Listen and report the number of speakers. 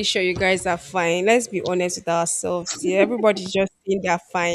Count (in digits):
1